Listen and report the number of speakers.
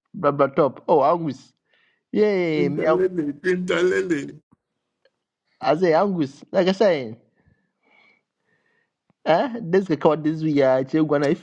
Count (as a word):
two